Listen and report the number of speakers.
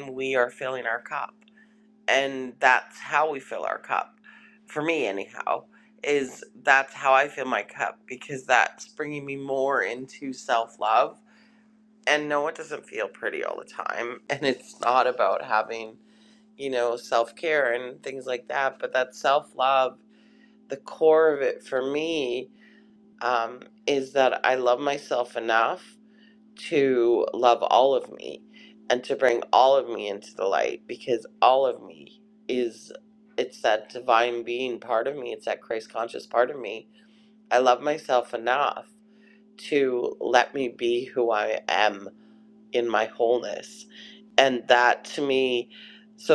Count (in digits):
1